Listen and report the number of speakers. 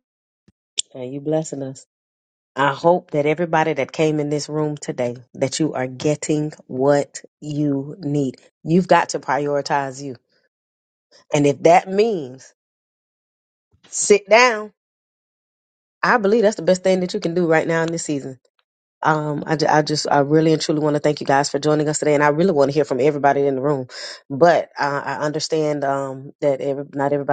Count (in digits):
1